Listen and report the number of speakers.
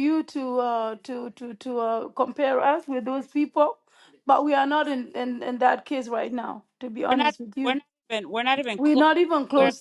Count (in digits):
2